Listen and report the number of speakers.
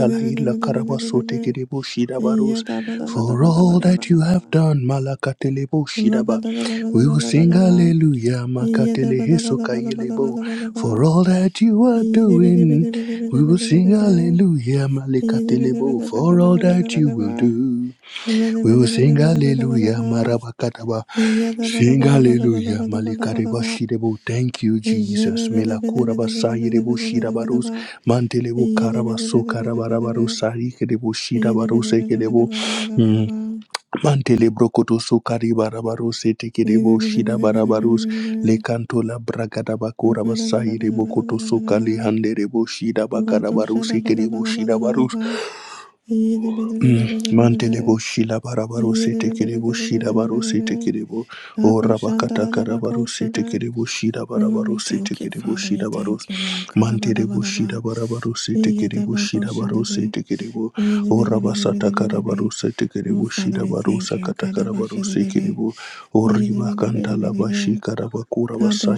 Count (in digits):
2